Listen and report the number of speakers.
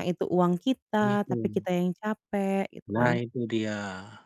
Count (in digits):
2